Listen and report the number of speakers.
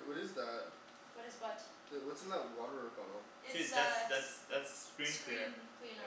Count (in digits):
3